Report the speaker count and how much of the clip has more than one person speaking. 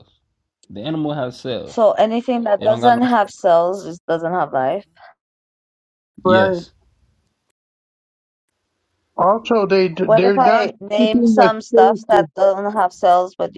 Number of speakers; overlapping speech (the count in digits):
3, about 24%